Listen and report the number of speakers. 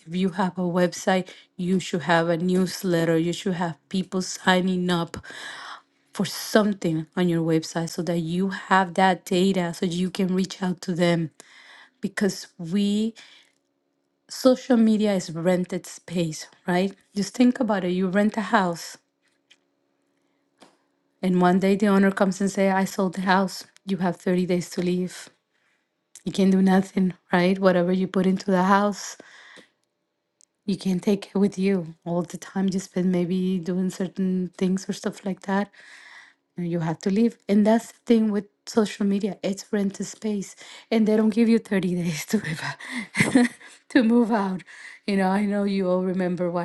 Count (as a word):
one